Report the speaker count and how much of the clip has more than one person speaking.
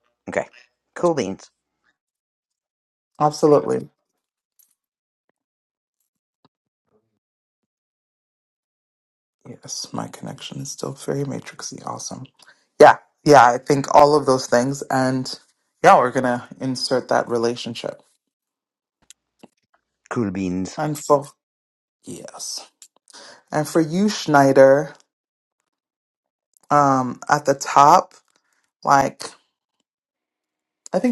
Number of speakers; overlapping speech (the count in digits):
2, no overlap